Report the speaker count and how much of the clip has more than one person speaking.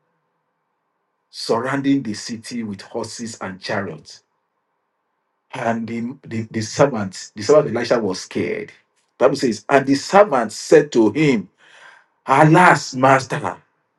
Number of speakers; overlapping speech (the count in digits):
1, no overlap